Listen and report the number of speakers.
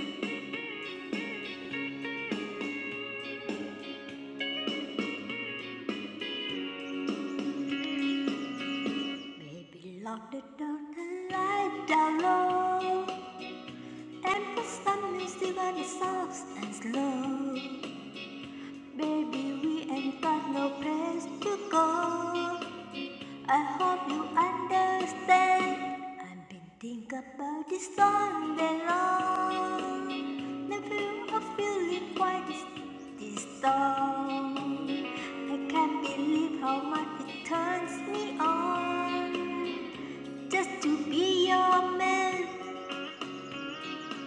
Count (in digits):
1